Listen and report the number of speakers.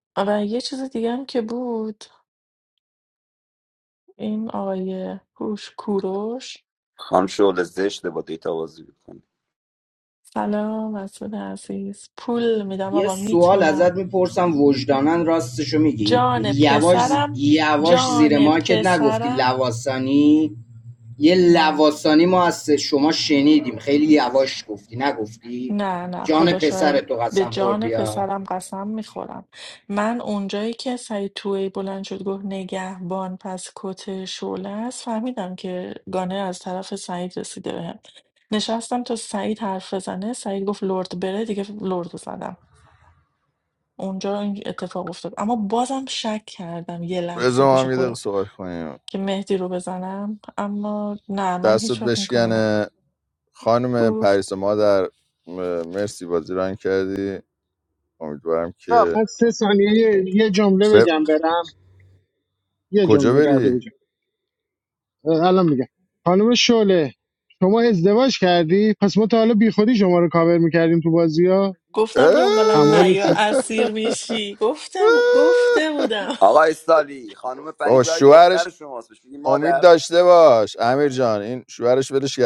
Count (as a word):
five